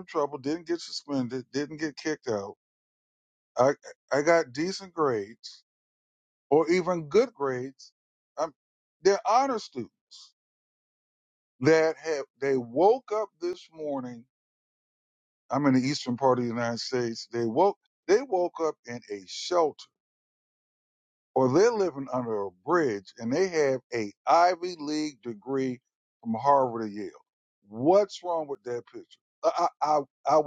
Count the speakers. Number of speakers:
1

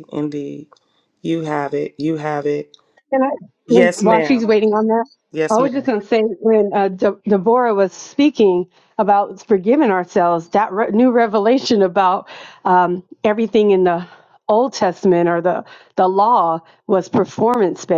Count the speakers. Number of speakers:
2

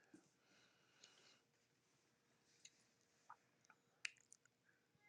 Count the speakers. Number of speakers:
0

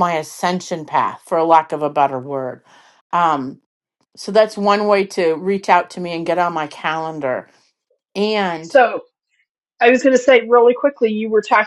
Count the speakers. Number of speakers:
2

